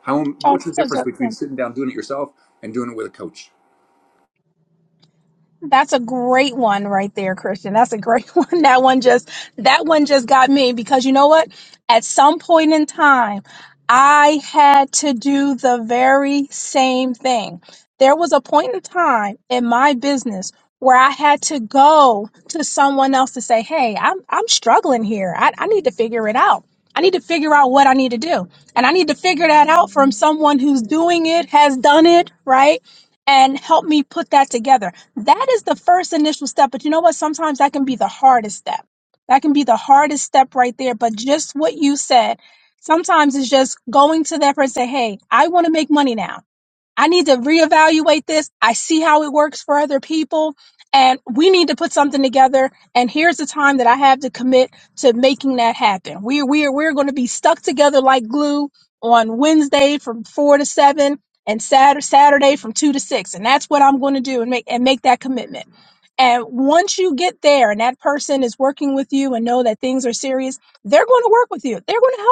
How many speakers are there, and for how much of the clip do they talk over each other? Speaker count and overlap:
2, about 1%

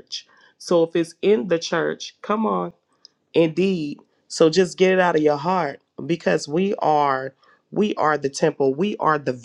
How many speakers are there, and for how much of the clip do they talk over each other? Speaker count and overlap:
1, no overlap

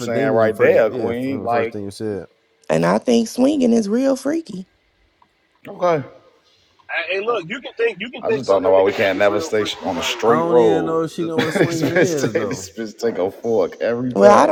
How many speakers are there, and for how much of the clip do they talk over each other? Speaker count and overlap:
4, about 45%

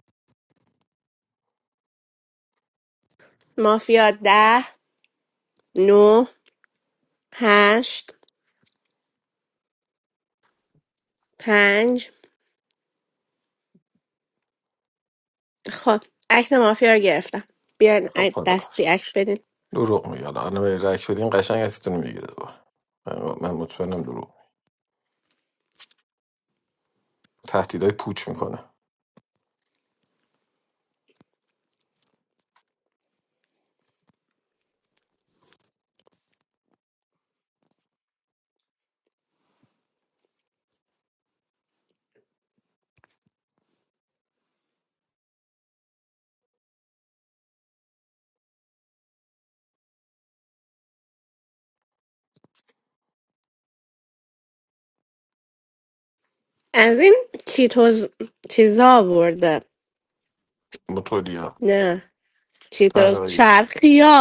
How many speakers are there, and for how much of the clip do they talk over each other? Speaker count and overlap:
2, about 1%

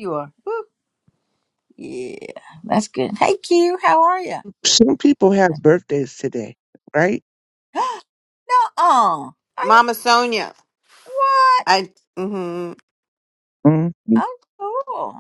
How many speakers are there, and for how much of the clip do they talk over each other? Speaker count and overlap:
3, about 2%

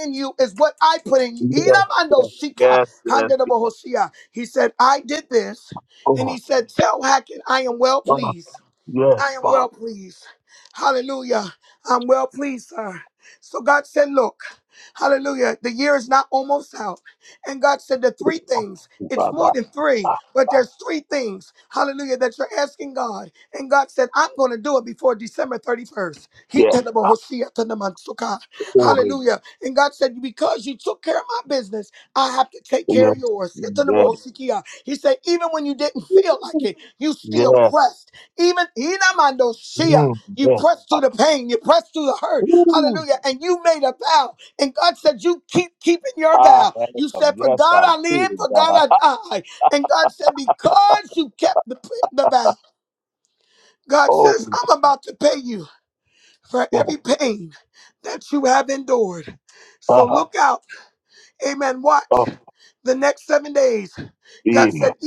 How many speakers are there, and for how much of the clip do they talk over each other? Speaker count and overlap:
2, about 15%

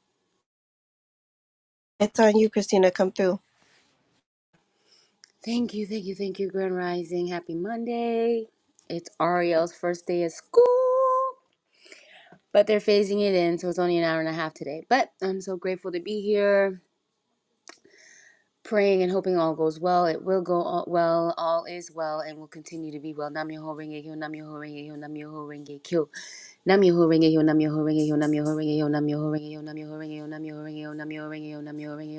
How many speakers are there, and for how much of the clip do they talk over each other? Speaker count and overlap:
2, no overlap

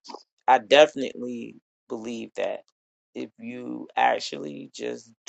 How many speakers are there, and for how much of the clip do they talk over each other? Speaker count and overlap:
1, no overlap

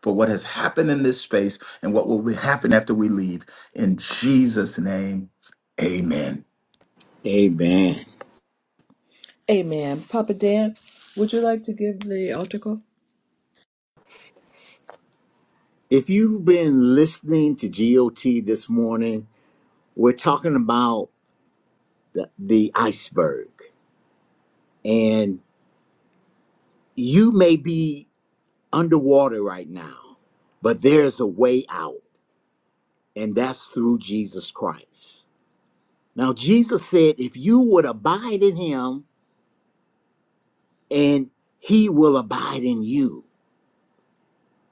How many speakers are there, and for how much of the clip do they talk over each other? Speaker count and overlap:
3, no overlap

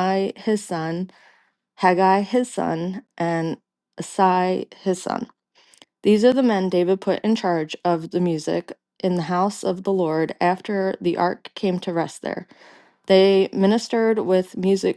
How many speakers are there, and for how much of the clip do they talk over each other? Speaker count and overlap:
1, no overlap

